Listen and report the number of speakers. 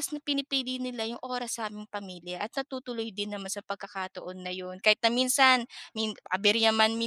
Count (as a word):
one